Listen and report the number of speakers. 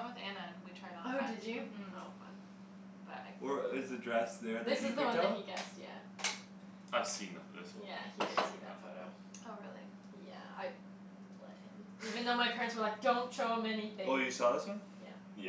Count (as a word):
four